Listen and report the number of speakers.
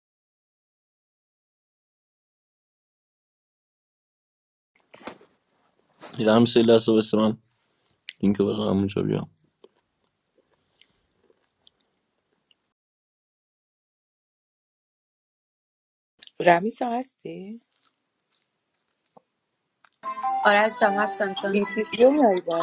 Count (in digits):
3